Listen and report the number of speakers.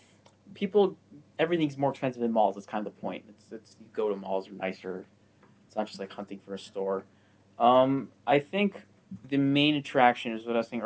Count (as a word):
one